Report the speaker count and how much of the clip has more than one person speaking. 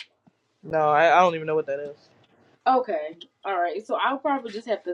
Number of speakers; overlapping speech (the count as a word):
two, no overlap